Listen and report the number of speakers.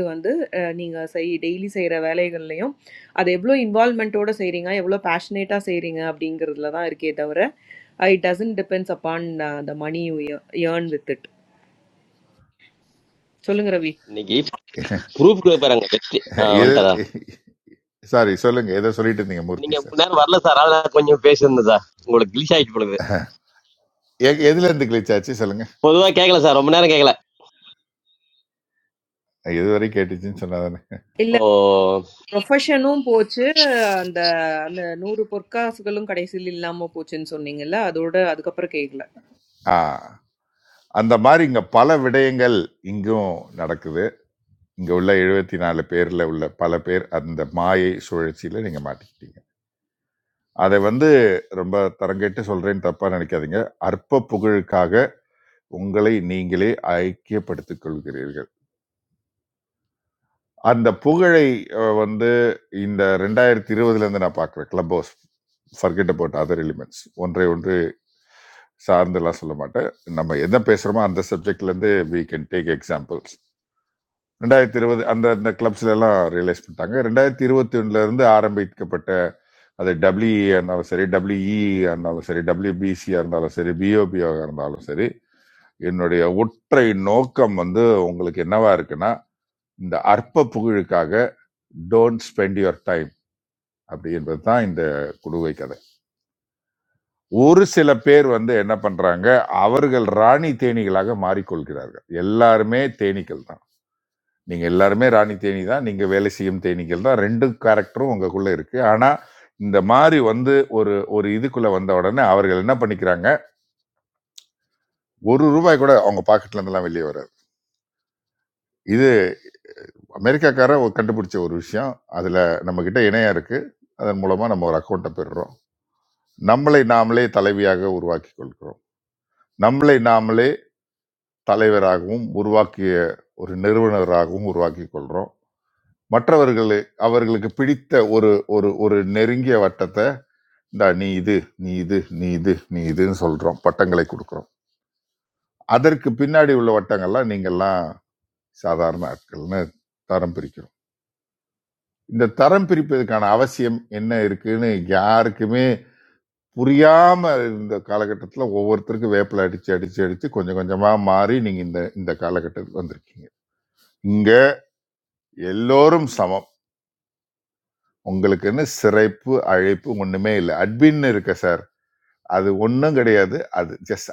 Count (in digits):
3